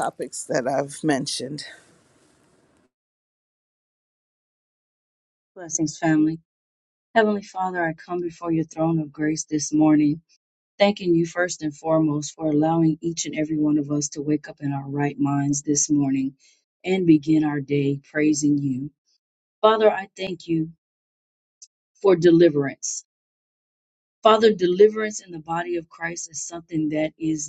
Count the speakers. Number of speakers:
2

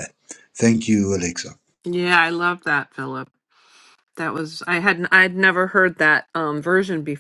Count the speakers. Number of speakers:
2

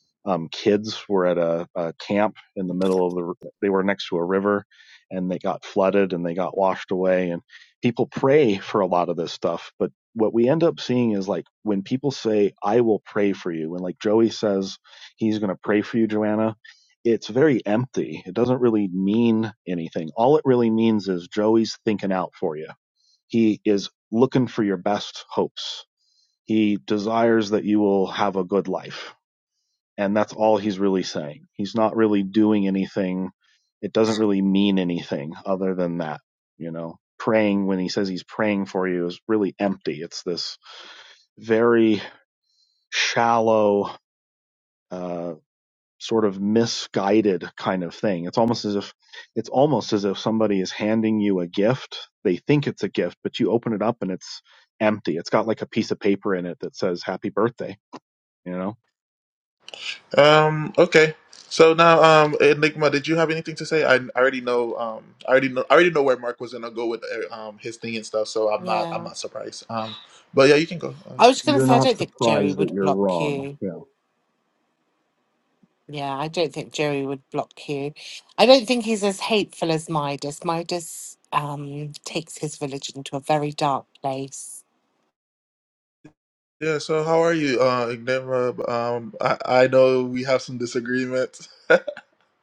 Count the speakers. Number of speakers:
3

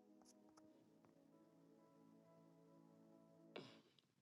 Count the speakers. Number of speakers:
0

